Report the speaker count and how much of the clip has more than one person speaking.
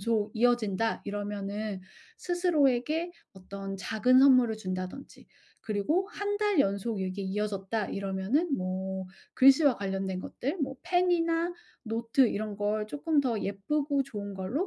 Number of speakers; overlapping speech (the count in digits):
1, no overlap